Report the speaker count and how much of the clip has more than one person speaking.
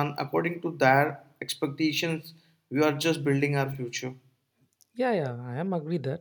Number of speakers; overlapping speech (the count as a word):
two, no overlap